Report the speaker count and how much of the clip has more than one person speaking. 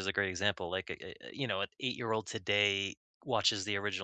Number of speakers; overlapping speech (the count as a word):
one, no overlap